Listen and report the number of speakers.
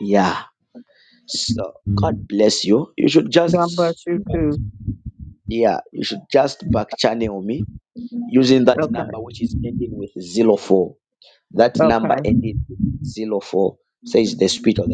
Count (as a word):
two